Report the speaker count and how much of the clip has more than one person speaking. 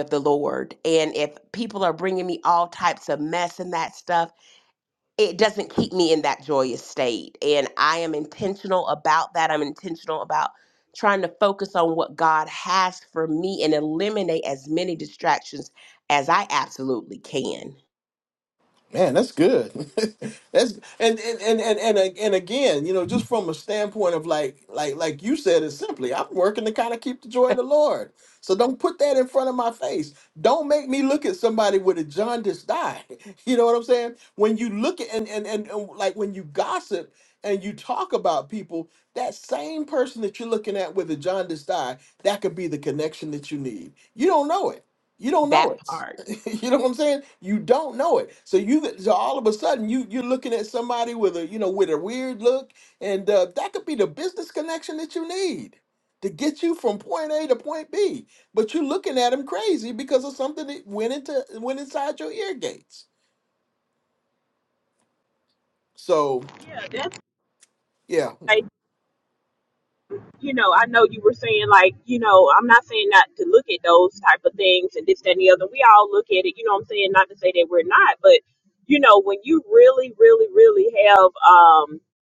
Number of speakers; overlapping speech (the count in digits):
3, under 1%